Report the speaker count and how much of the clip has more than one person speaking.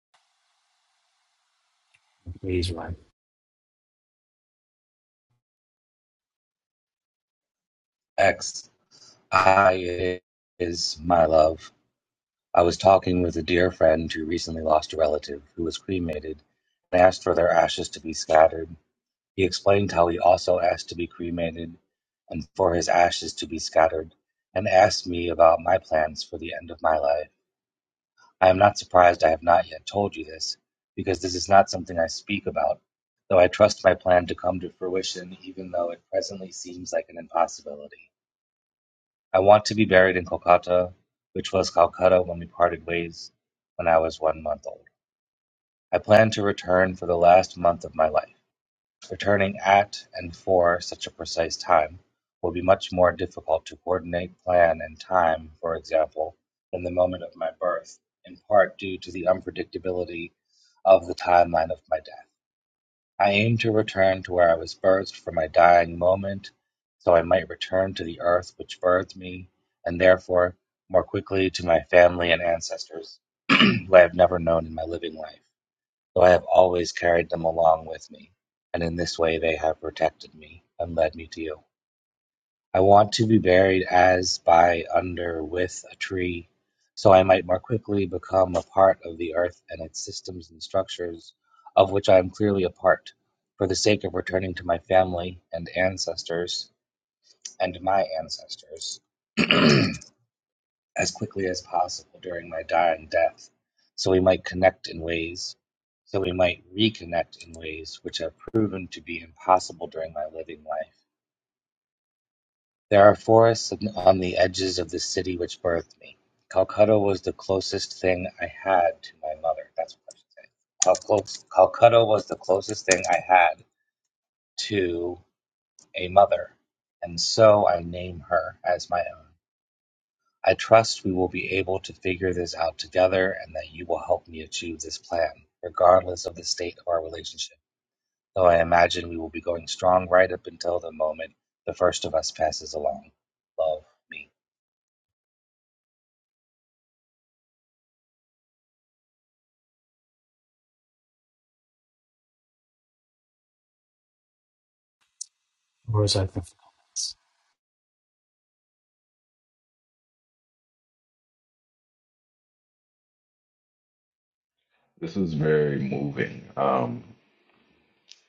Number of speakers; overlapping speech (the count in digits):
3, no overlap